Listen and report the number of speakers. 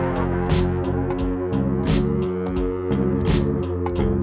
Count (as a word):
zero